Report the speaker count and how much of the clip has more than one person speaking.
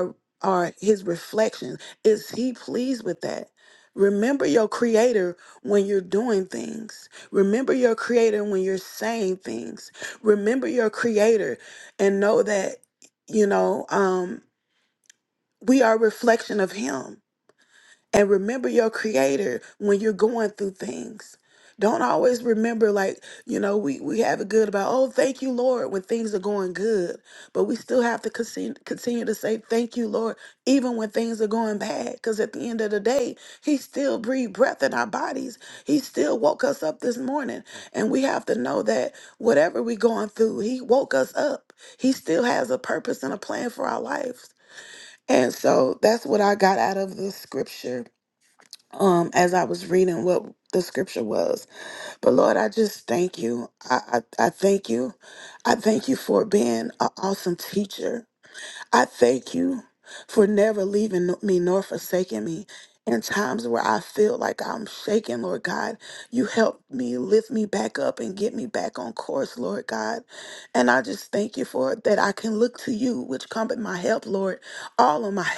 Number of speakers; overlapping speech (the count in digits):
1, no overlap